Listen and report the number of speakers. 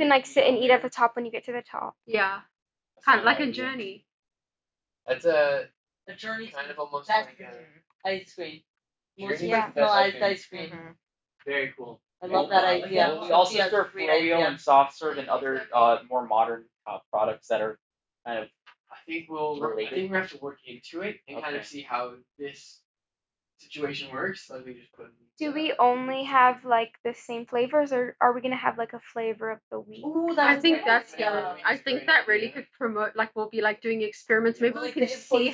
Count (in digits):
5